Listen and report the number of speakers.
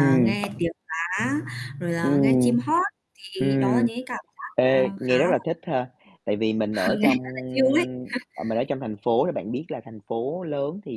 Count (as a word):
two